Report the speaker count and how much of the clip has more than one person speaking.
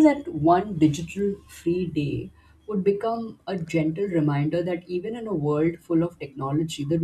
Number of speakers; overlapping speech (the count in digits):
1, no overlap